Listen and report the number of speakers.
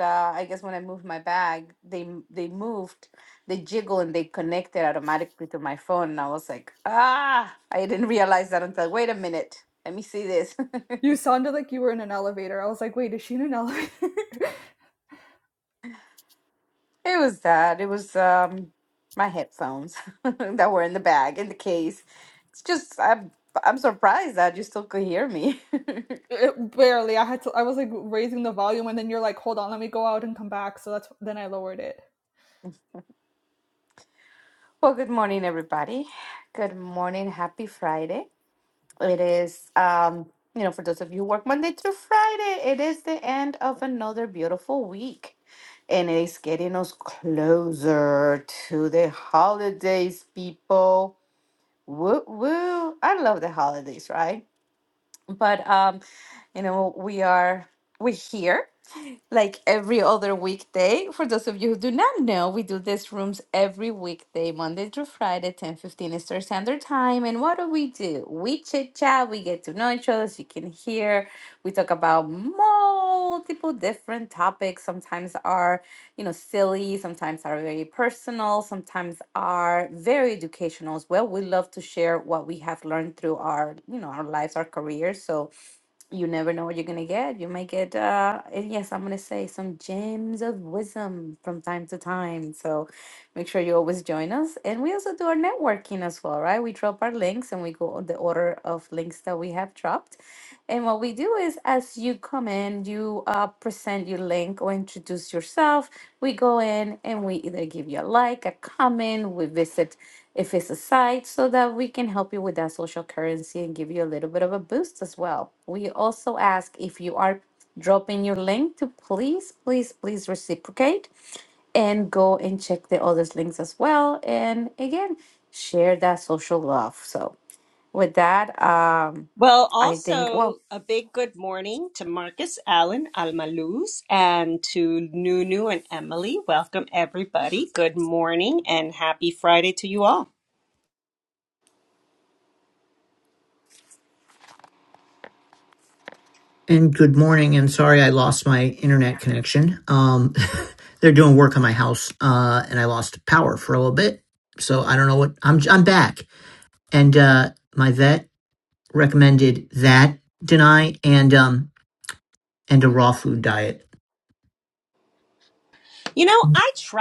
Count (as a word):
four